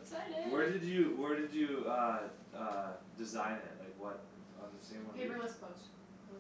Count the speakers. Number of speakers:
2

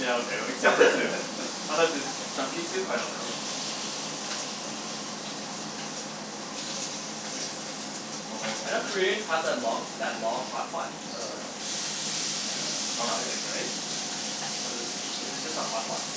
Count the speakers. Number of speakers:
2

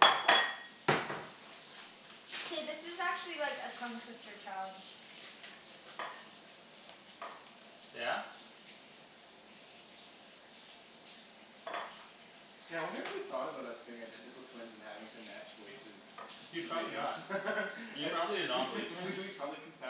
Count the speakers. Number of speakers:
3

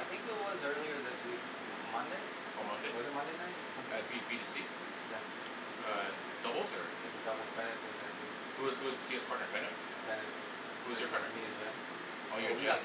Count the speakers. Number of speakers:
2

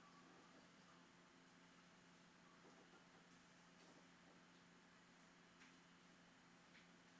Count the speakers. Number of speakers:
0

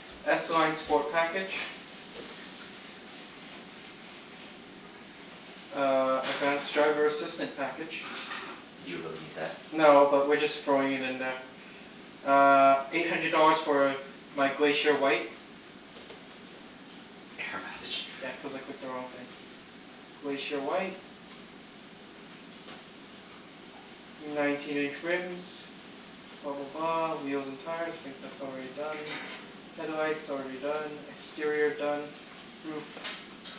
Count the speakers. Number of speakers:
2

